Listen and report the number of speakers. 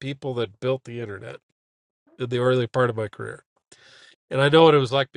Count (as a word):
one